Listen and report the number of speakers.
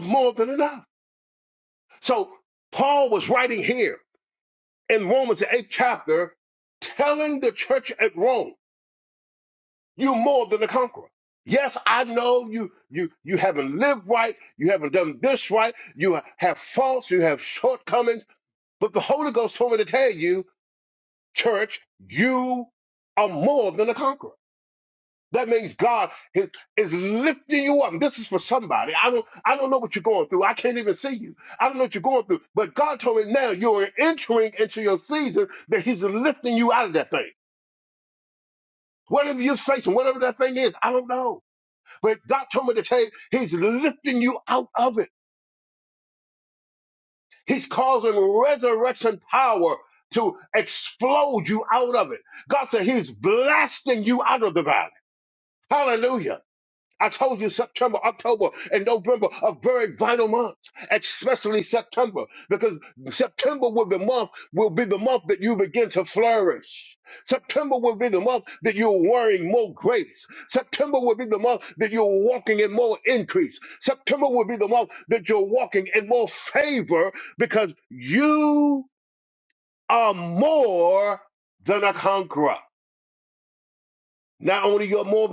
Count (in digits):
1